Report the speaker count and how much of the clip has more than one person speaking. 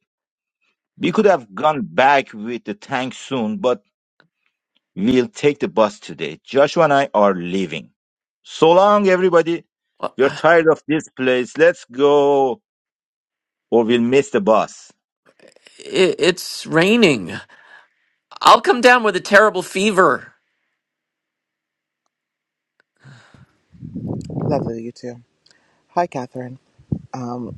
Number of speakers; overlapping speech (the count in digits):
3, under 1%